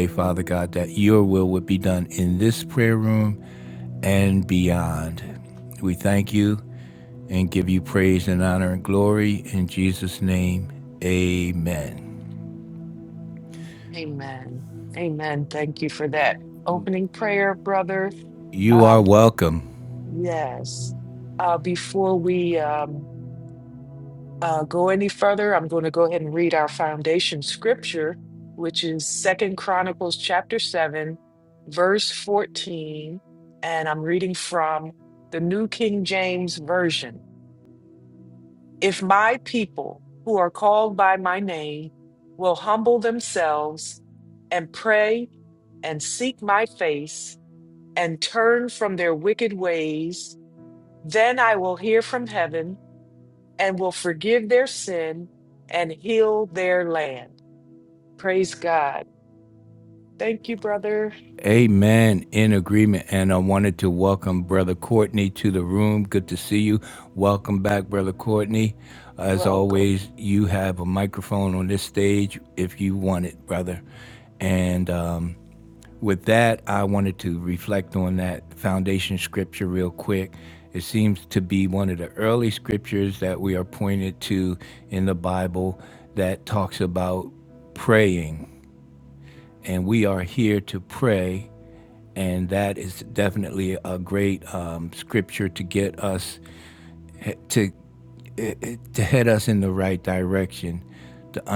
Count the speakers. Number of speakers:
two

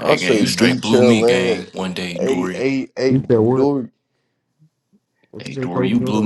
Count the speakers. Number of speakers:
three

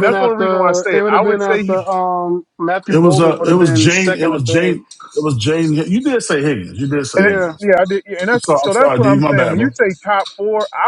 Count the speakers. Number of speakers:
three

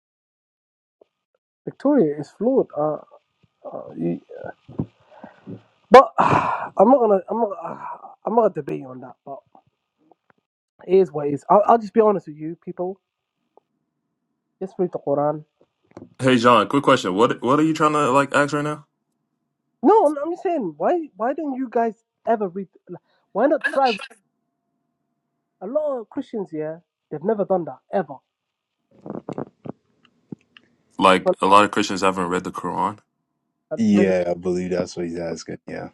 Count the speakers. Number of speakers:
three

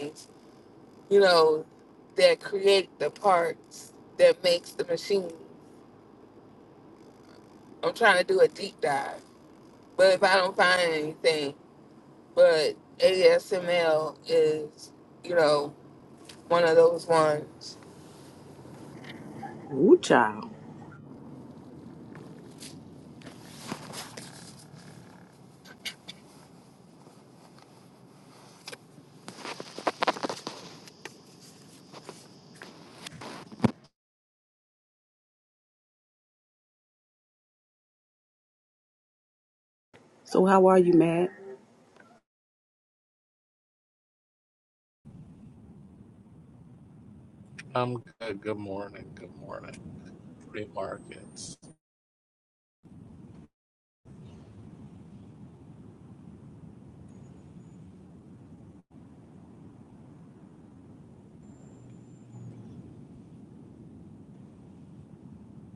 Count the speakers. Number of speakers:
three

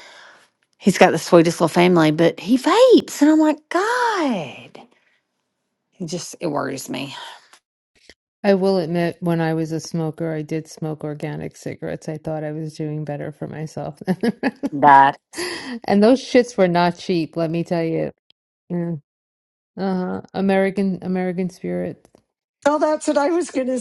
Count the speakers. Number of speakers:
three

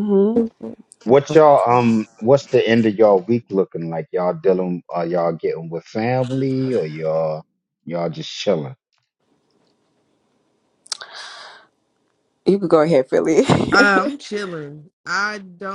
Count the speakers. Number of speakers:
three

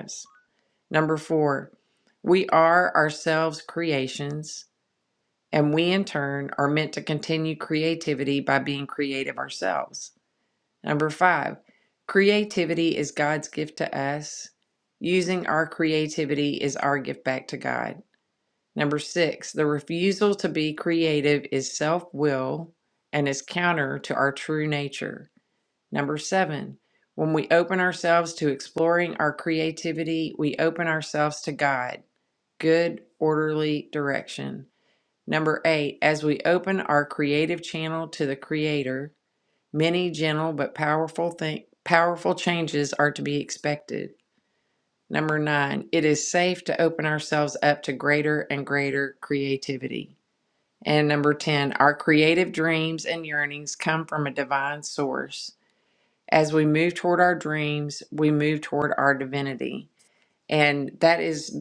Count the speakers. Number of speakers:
one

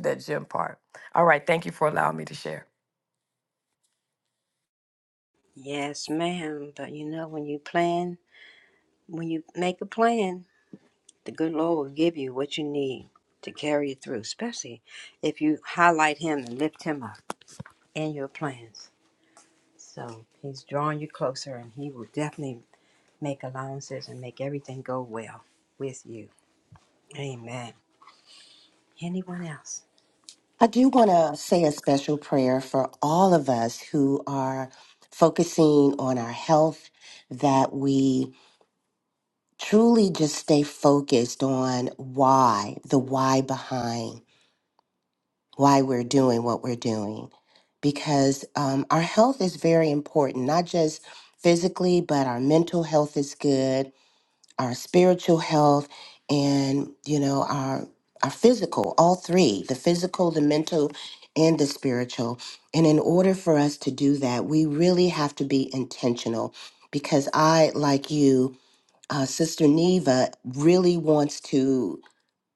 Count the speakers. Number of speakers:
three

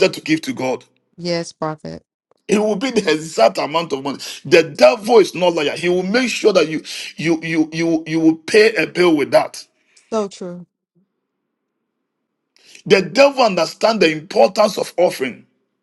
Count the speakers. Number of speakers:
two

